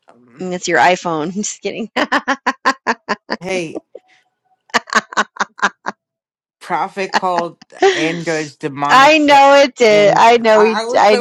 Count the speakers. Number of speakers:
two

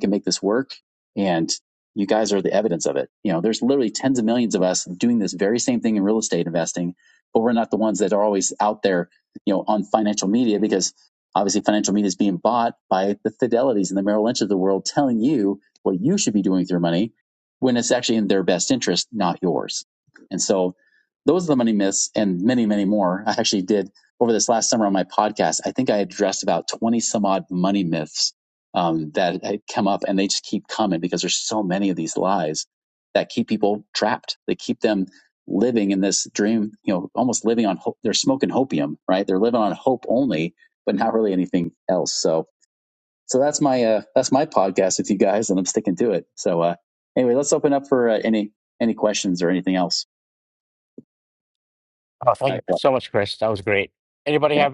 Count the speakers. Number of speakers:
two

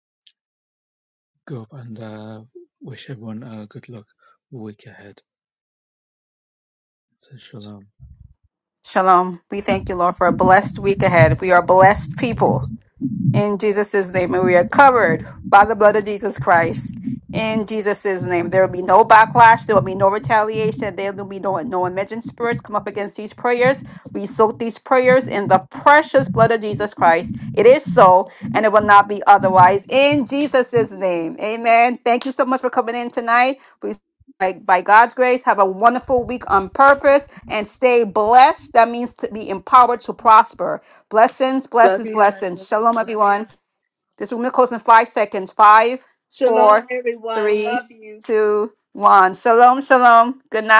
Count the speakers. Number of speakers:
three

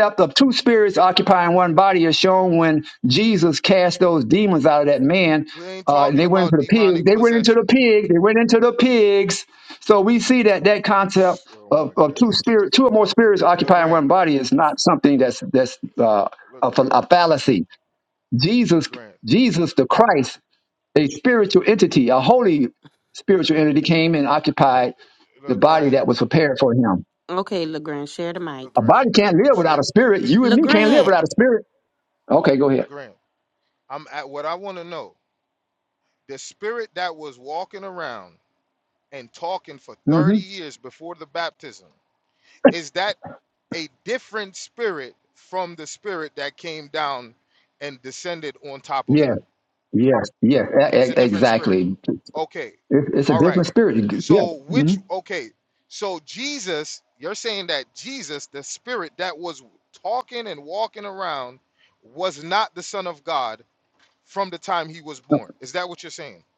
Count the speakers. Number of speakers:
three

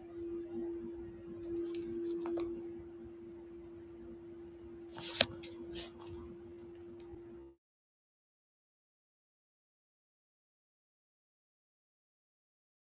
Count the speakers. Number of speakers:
zero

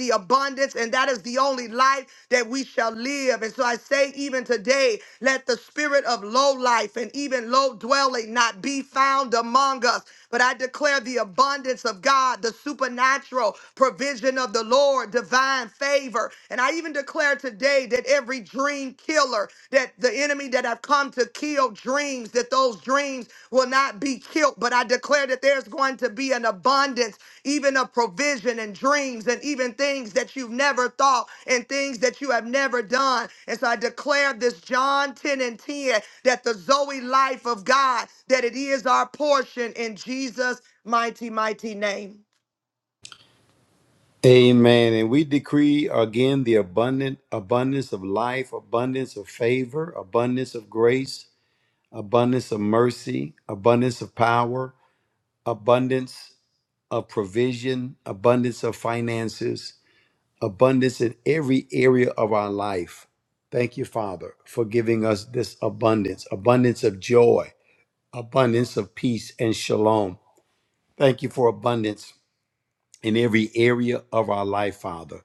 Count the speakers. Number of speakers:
two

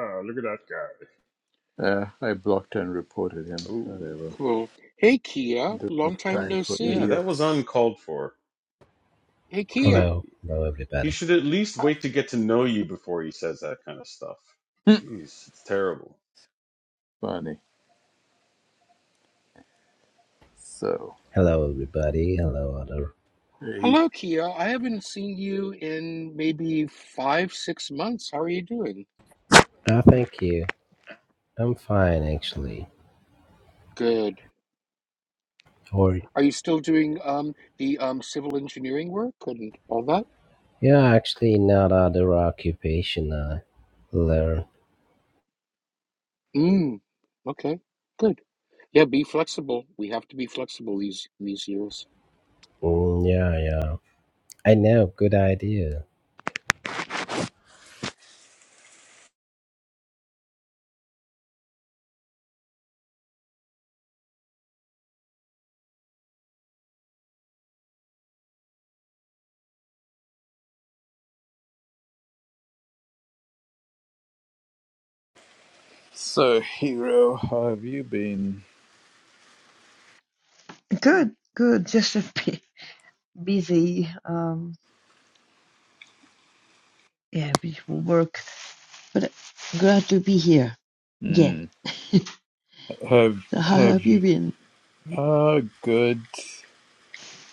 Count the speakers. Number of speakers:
five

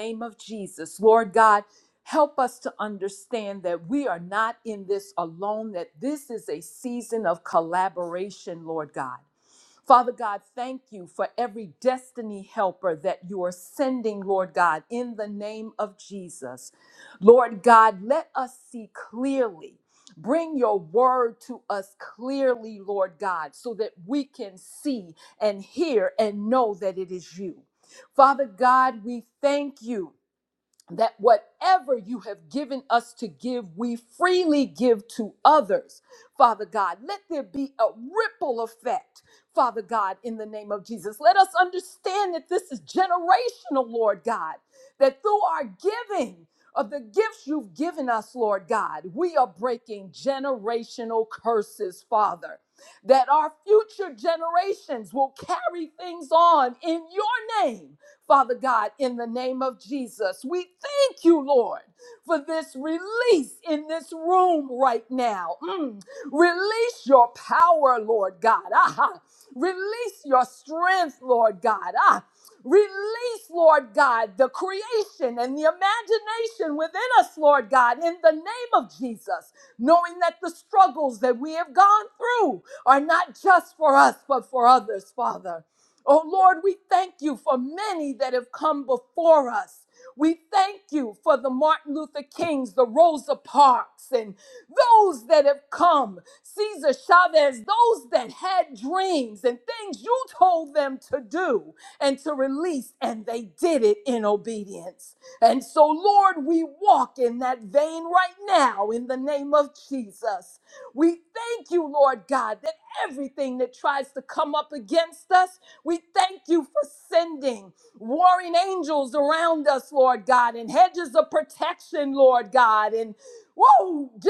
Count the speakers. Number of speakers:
one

